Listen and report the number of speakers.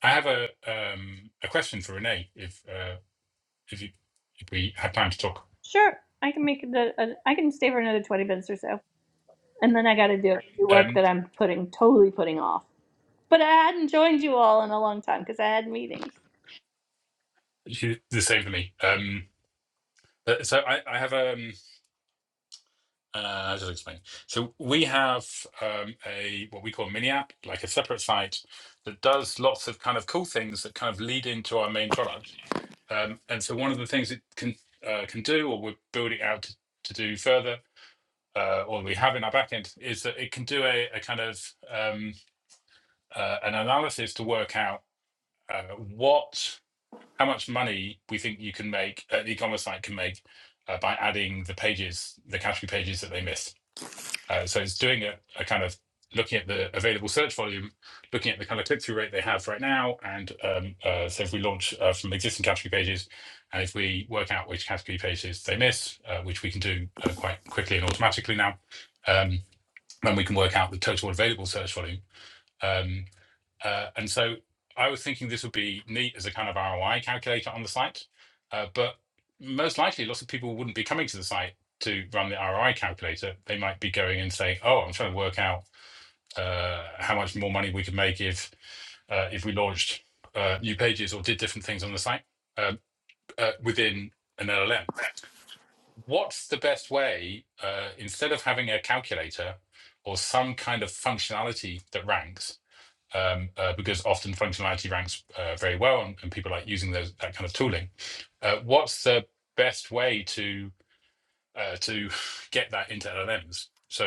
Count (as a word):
two